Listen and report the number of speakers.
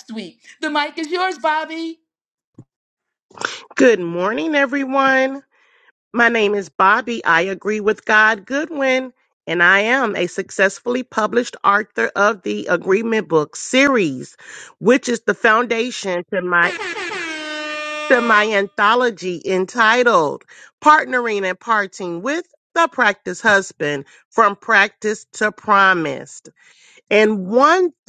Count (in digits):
2